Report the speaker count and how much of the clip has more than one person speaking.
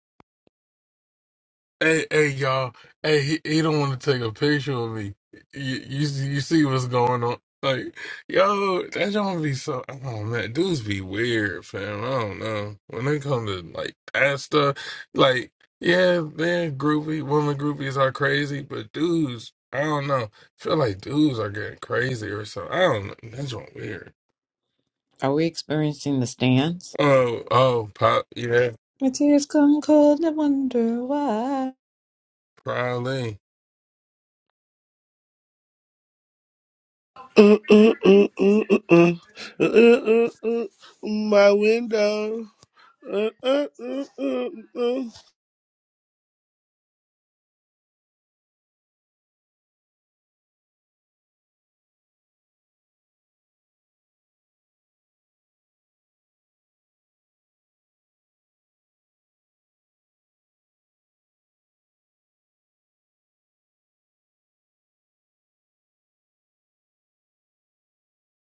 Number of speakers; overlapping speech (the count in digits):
3, no overlap